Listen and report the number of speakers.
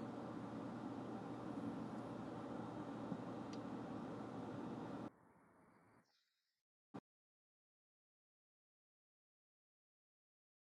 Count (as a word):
zero